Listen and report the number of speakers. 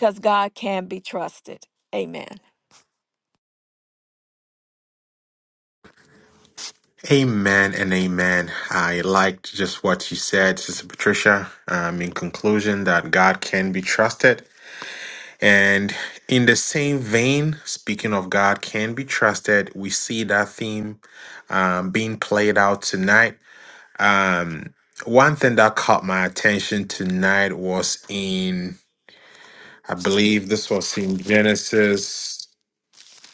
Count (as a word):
two